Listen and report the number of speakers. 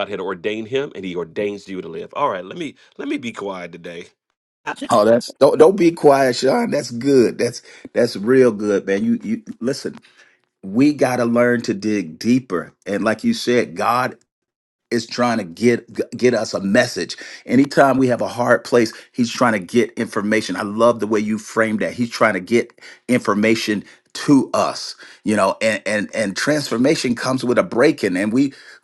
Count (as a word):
two